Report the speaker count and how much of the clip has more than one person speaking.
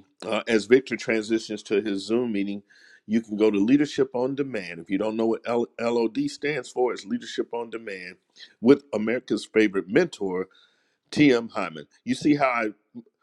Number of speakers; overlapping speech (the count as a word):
one, no overlap